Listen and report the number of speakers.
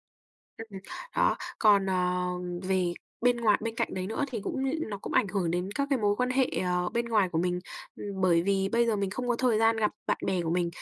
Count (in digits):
1